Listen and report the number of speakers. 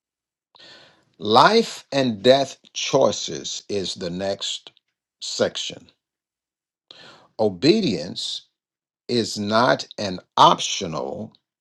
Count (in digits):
1